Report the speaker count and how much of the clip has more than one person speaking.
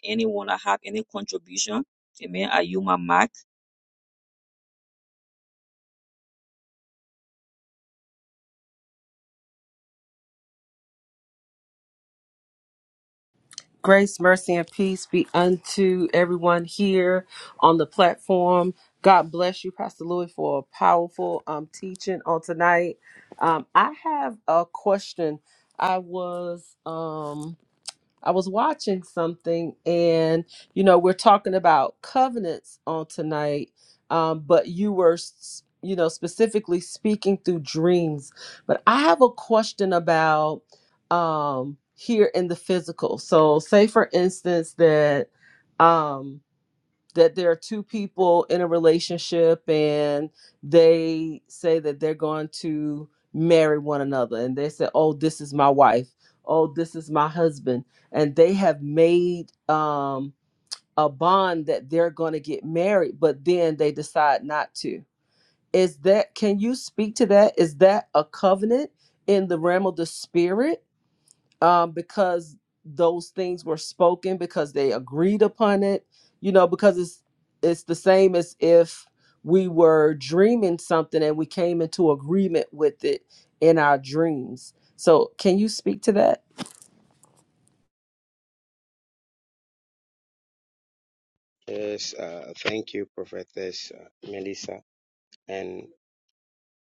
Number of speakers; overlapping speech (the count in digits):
3, no overlap